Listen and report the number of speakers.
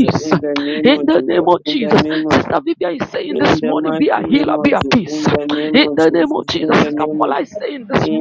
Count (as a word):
two